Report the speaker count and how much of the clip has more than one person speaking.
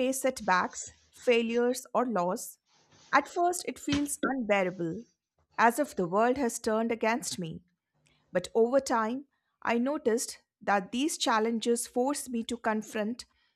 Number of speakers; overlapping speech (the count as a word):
one, no overlap